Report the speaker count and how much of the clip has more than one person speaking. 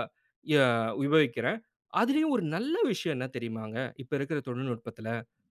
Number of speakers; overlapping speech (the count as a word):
one, no overlap